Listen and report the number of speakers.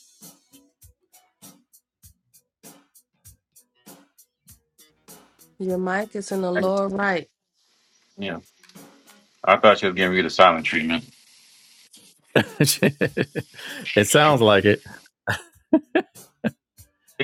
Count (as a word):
three